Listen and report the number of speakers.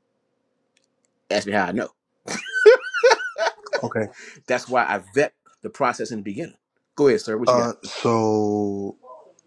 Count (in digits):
2